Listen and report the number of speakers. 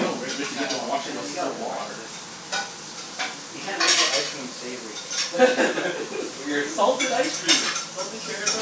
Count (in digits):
3